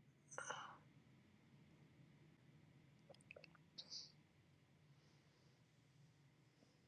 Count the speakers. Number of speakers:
0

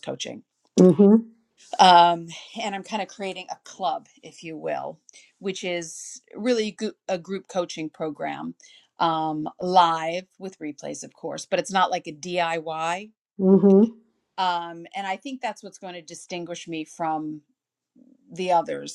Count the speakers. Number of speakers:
2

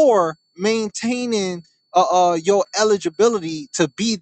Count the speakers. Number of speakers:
1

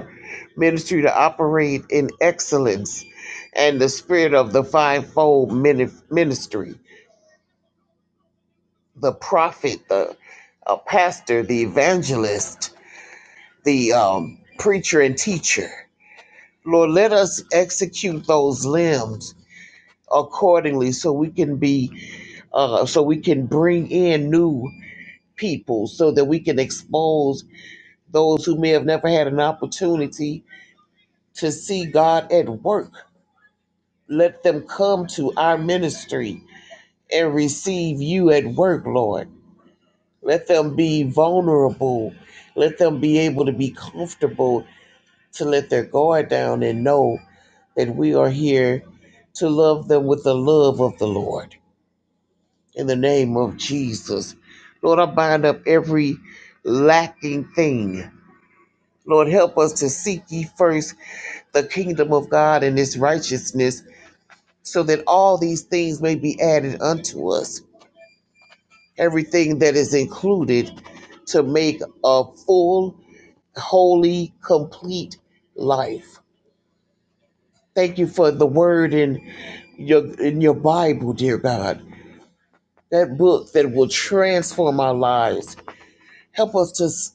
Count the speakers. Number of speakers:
1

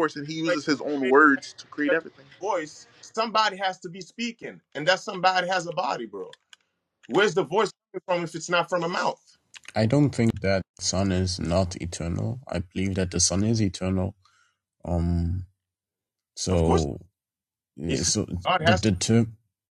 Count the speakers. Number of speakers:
3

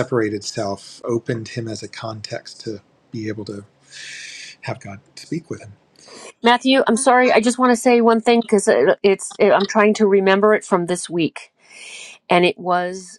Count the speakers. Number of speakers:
2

